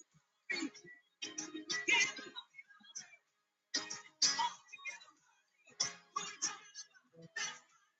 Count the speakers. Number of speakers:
zero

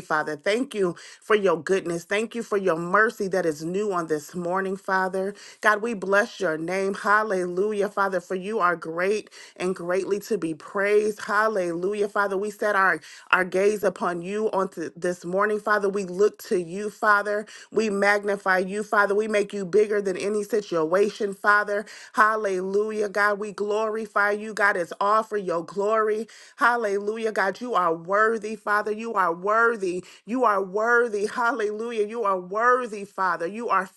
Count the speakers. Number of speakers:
one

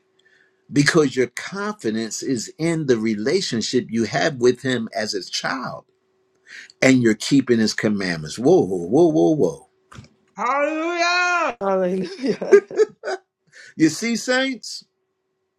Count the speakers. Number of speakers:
three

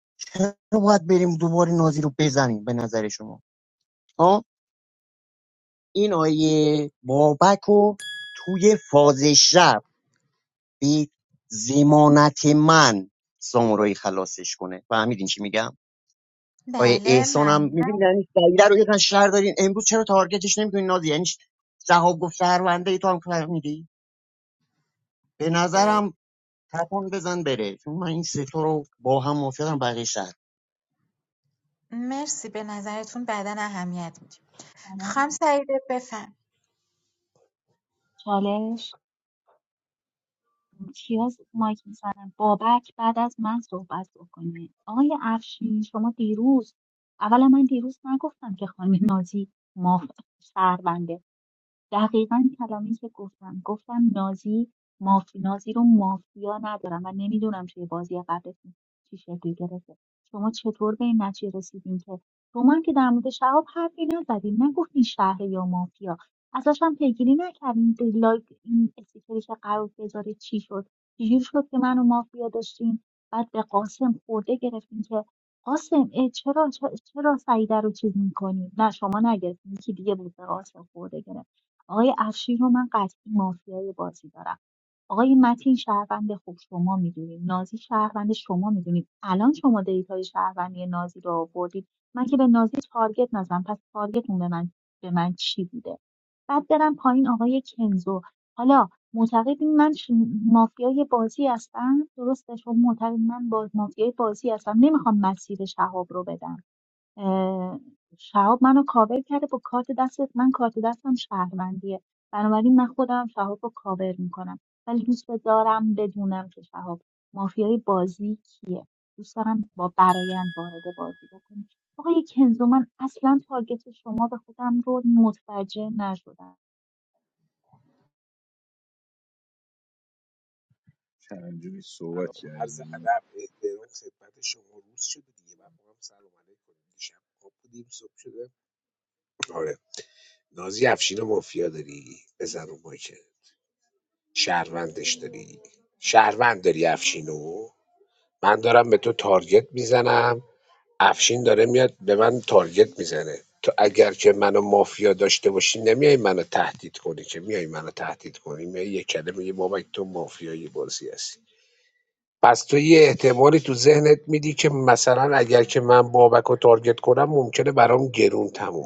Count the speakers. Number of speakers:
five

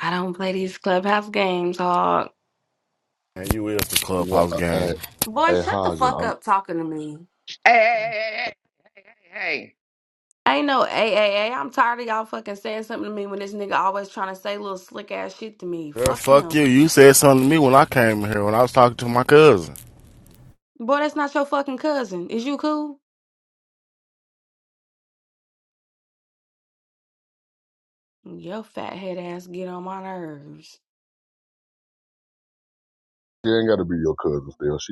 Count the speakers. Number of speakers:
four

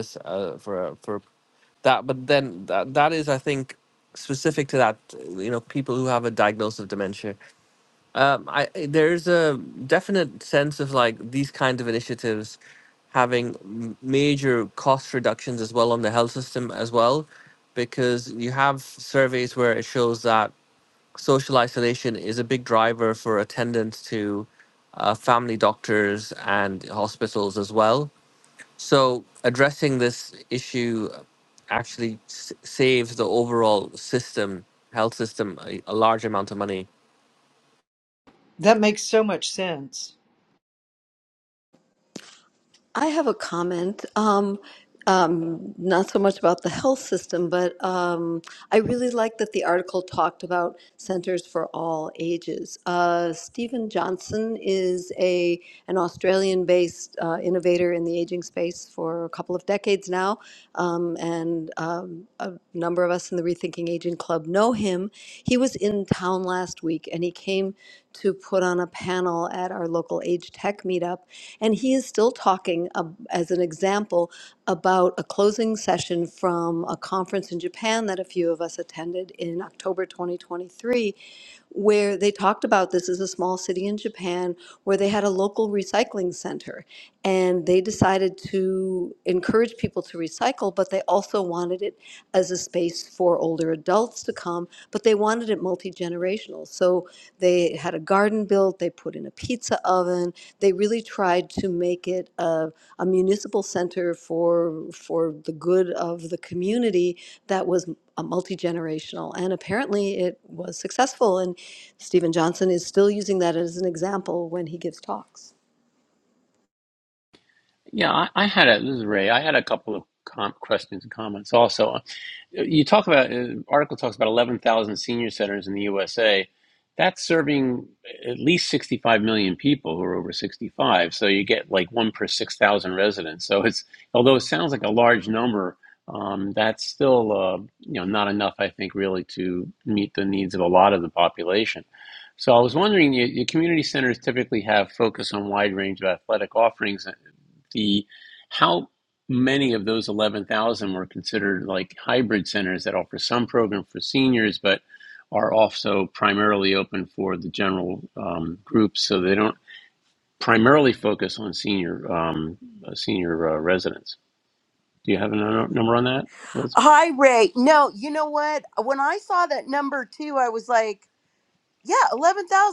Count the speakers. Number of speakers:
five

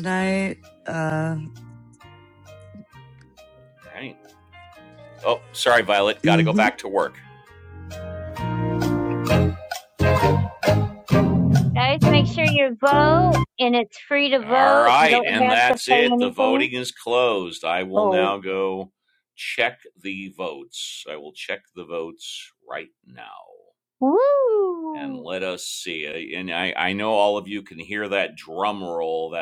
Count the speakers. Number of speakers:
three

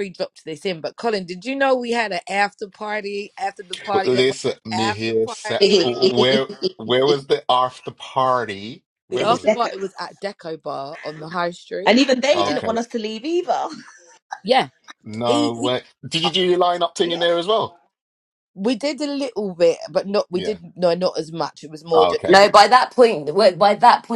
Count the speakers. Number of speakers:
four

